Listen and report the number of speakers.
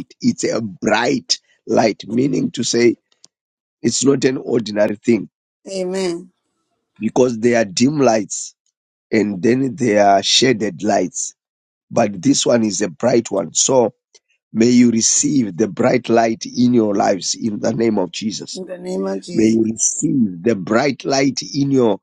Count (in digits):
2